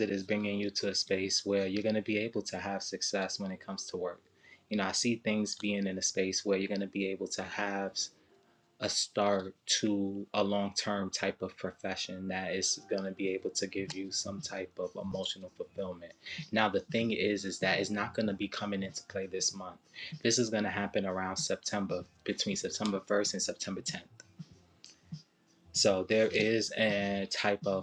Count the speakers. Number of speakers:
one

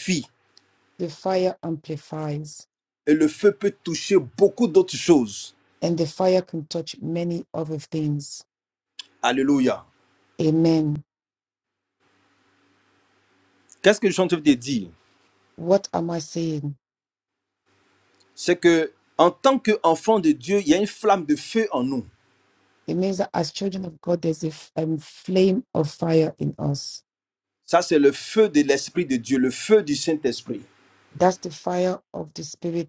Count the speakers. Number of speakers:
two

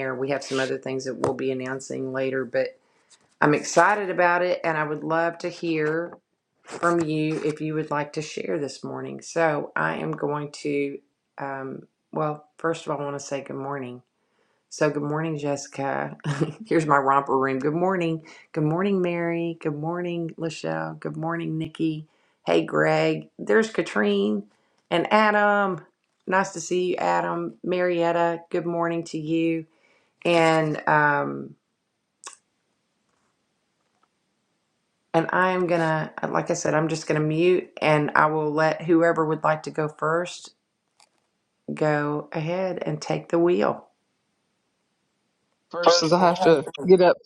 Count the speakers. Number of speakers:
two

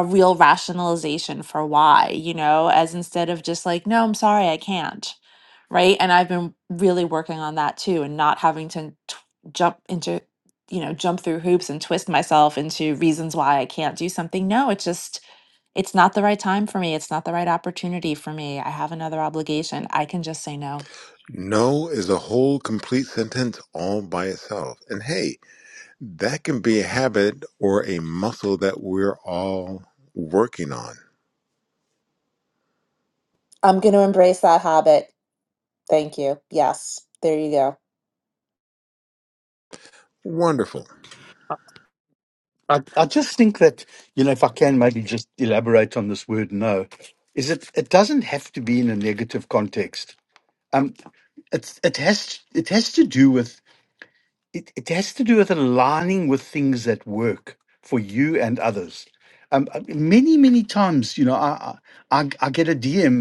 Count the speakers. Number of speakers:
three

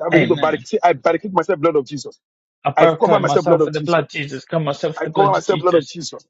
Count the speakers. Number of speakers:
two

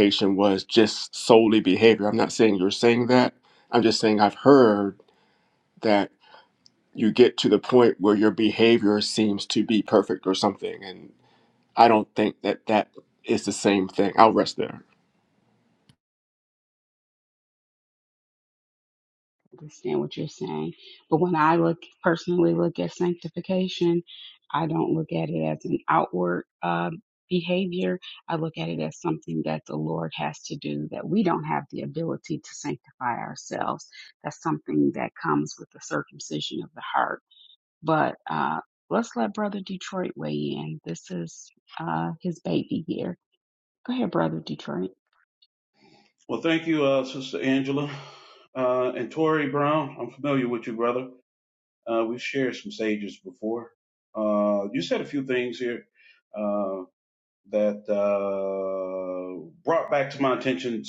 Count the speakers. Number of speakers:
three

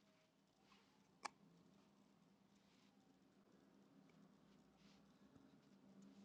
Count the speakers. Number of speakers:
zero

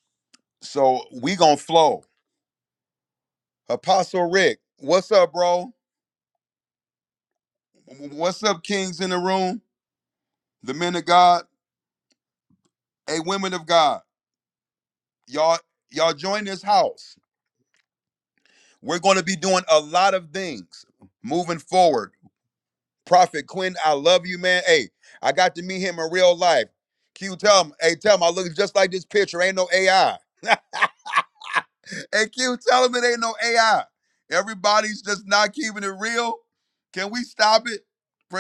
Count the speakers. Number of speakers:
one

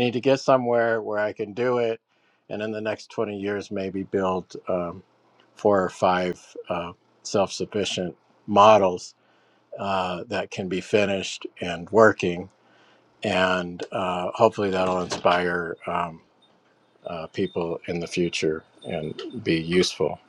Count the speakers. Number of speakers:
one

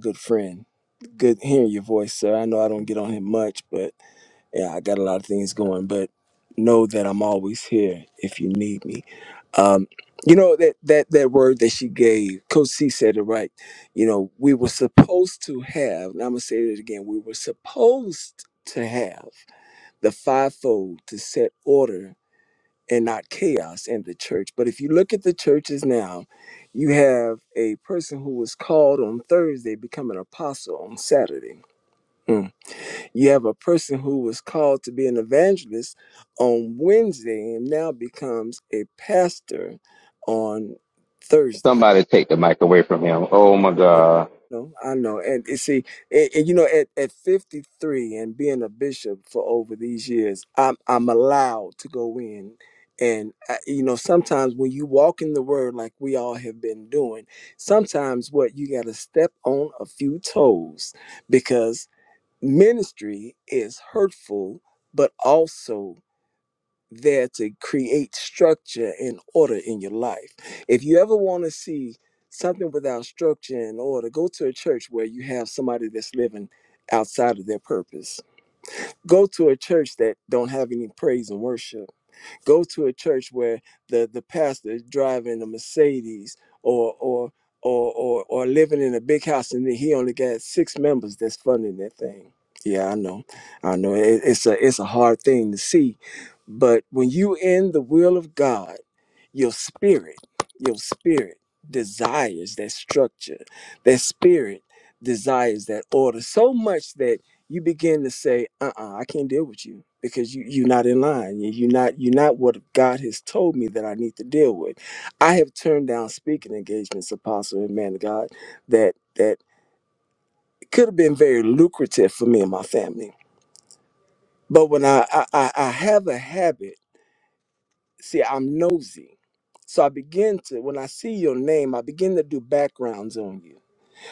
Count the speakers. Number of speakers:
two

